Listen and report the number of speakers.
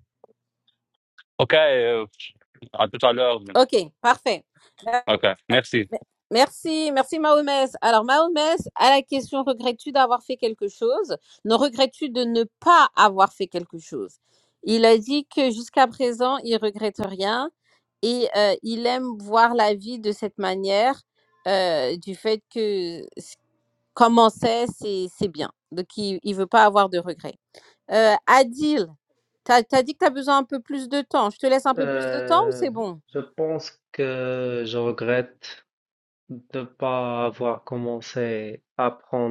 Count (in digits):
3